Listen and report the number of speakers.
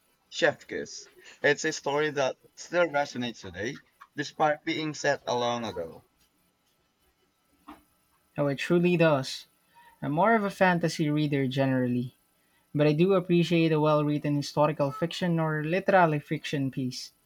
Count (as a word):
two